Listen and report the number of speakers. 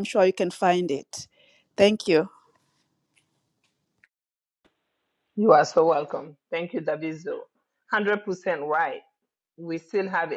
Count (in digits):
2